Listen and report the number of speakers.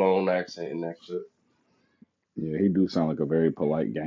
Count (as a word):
two